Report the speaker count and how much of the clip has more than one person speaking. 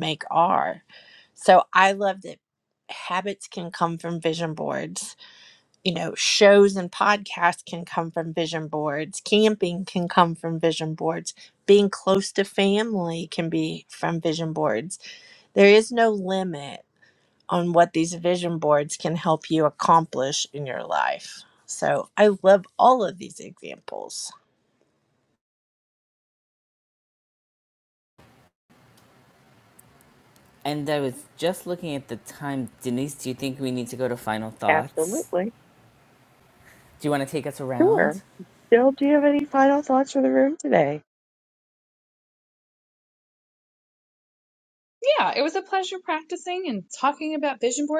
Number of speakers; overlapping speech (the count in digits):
4, about 1%